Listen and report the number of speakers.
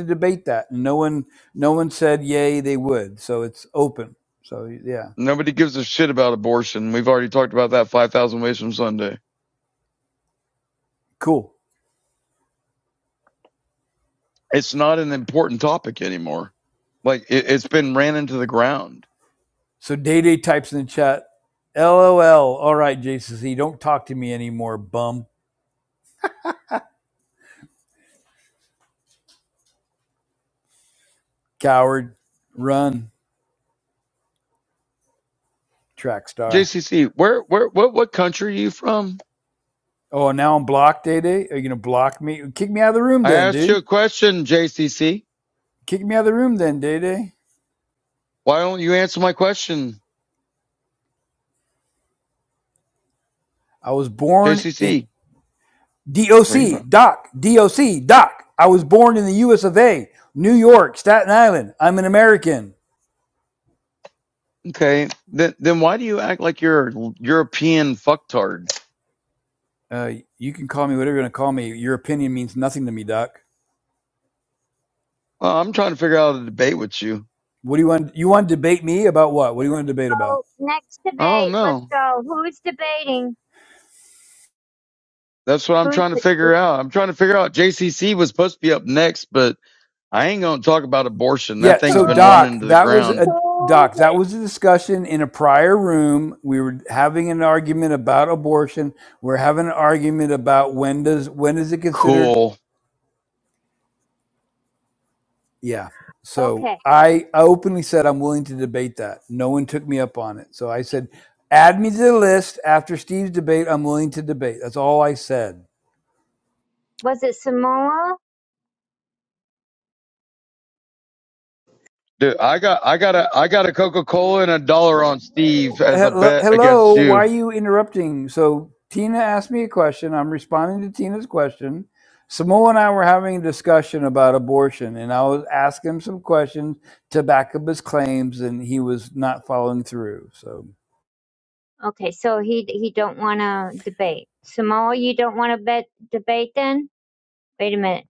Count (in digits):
3